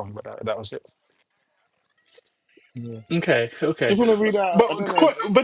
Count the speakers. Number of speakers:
three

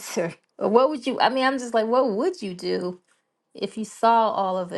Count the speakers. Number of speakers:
one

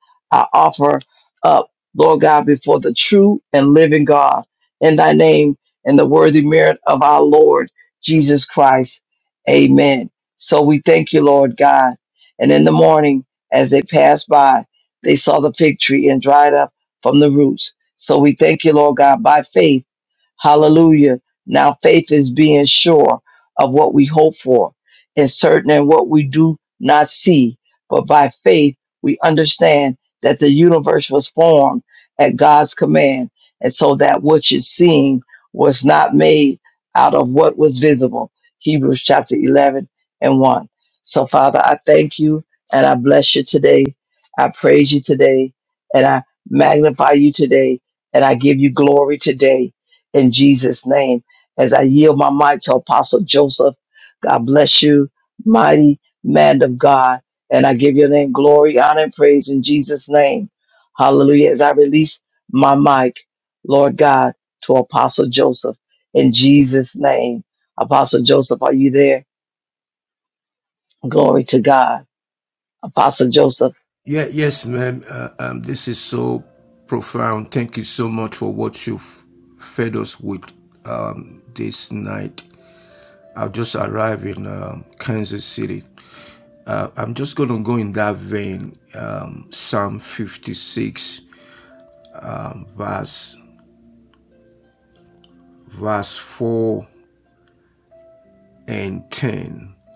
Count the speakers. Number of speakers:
two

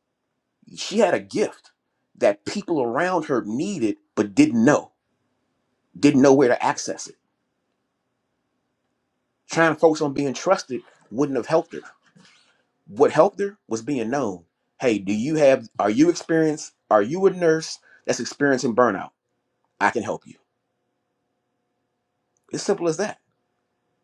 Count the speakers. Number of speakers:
one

